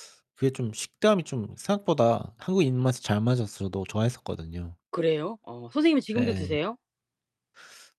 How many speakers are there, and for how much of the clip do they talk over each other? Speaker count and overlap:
2, about 5%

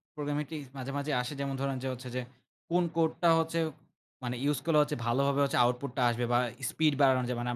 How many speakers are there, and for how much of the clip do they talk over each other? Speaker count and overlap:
1, no overlap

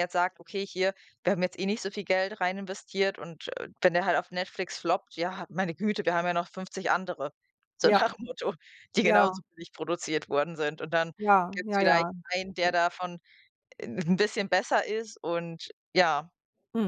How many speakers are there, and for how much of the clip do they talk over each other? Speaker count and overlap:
2, about 7%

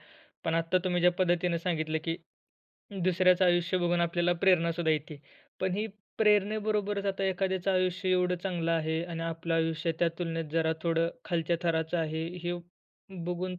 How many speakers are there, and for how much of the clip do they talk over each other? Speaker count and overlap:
1, no overlap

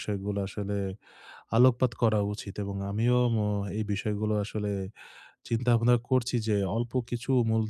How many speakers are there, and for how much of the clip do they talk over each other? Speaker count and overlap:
1, no overlap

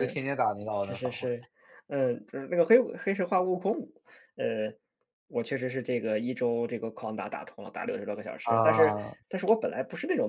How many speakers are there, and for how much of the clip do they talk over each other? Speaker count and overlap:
2, about 11%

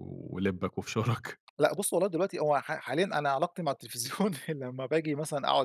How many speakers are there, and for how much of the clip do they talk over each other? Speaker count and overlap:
2, no overlap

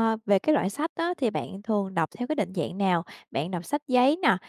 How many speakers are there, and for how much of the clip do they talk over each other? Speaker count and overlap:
1, no overlap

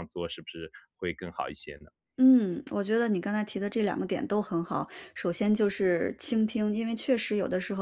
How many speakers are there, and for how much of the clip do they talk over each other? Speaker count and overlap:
2, no overlap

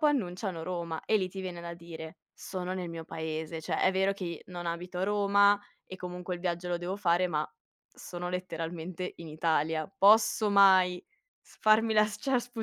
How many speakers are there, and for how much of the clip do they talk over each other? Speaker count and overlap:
1, no overlap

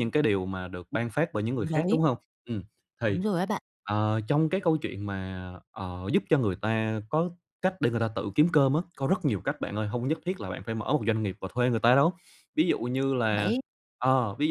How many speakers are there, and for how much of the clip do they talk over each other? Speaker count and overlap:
2, about 5%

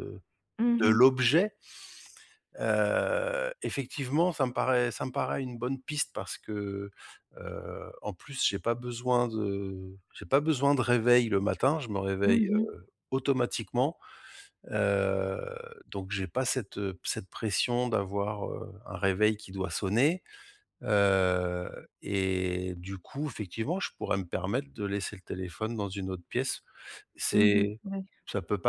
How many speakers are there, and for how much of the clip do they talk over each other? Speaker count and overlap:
2, about 4%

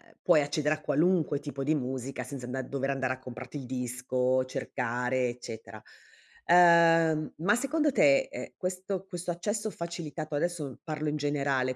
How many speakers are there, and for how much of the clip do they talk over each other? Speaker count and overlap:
1, no overlap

